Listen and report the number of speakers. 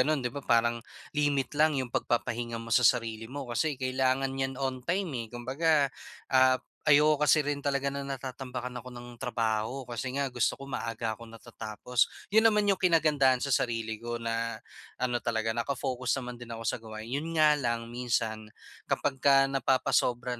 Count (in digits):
1